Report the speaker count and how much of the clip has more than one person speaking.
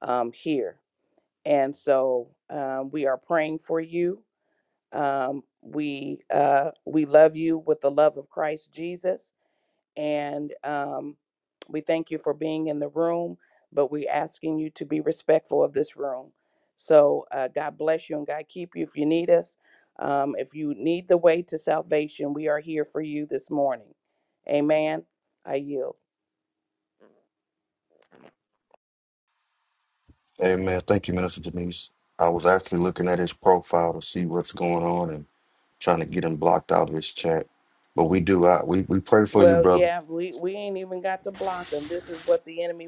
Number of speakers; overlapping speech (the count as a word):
two, about 1%